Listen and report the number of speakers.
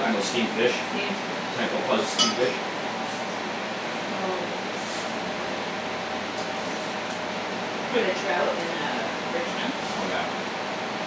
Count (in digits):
2